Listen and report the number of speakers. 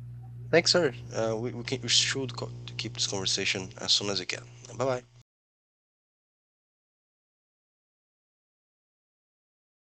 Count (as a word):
one